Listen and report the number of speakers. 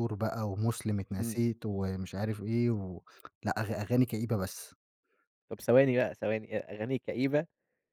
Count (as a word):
two